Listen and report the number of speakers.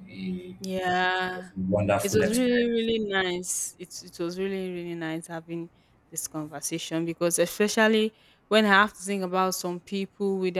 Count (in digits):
2